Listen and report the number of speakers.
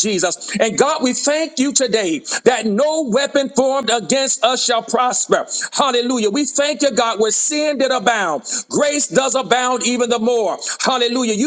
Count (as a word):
one